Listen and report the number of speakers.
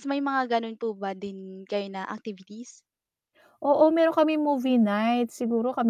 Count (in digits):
2